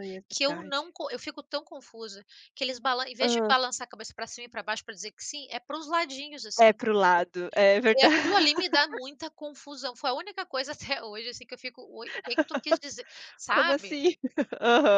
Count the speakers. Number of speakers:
2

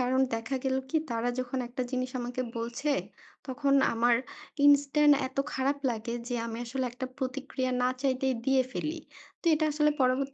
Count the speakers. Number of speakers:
1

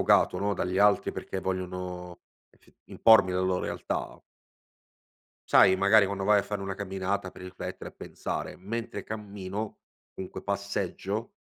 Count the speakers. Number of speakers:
1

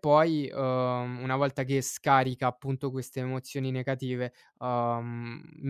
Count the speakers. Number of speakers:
1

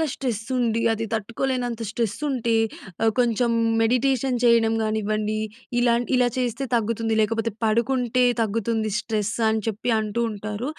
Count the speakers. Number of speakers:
1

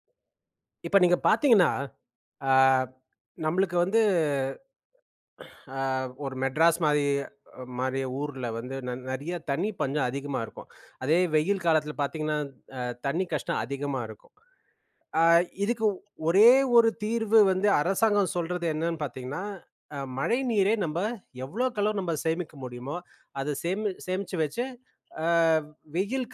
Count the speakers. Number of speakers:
1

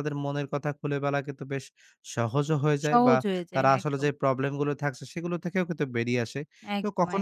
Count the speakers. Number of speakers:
2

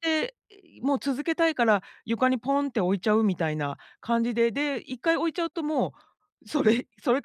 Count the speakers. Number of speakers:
1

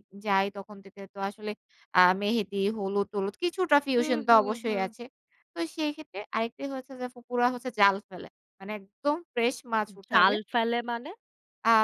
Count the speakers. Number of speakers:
2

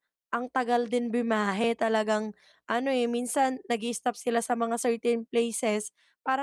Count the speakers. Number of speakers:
1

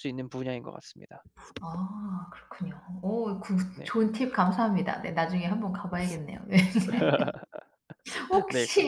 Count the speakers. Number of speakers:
2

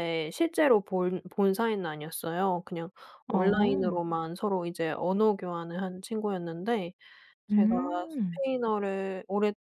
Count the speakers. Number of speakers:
2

